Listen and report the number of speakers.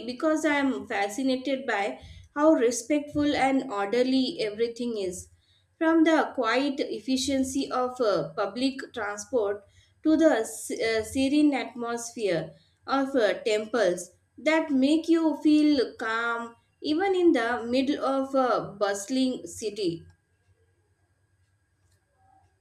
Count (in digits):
1